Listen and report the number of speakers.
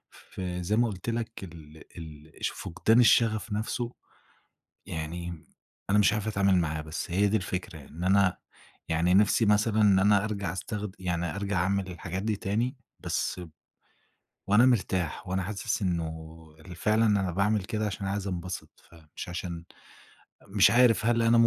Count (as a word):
one